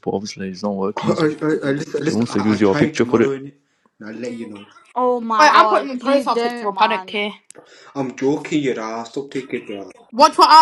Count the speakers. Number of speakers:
4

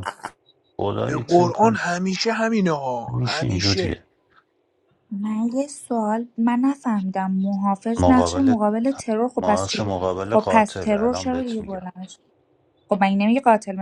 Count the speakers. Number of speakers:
3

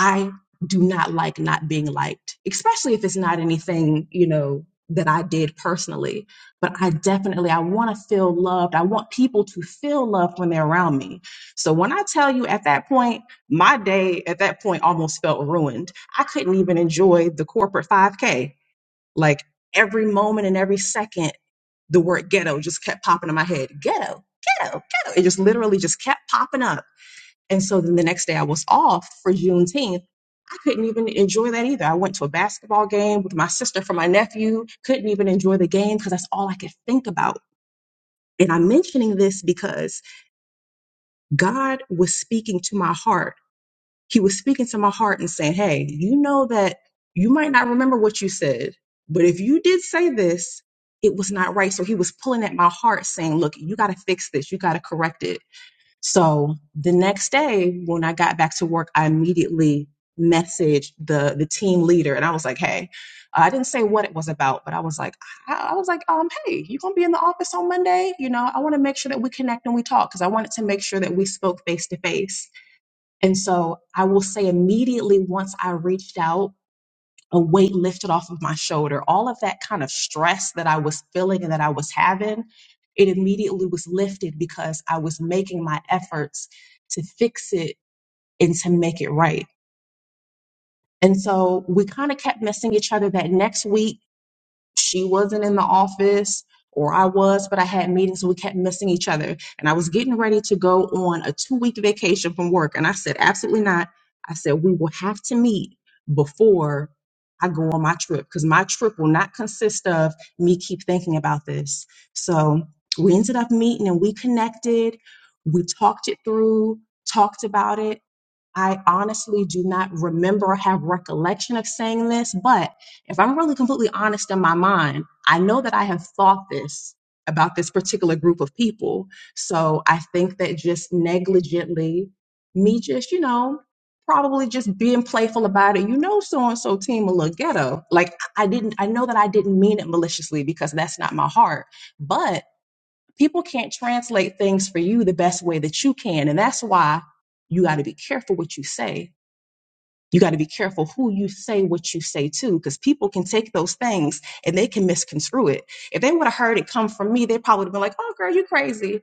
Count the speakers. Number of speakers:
1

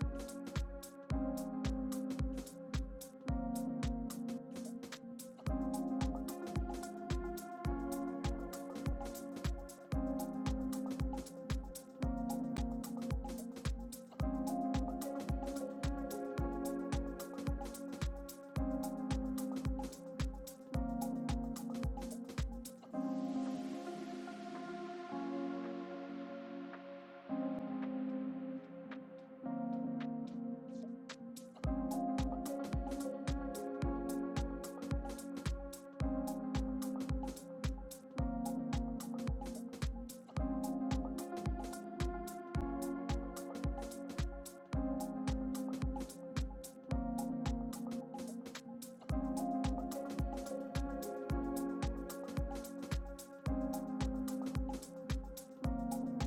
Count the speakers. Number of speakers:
0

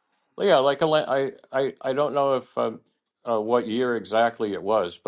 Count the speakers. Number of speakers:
1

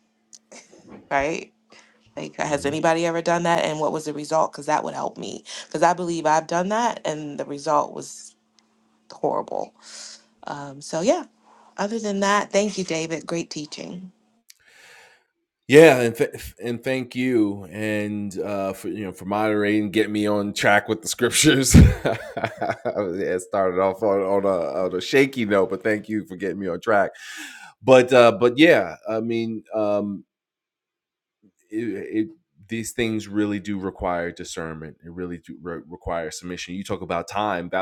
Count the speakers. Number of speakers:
2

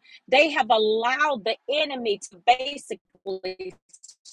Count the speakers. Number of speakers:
1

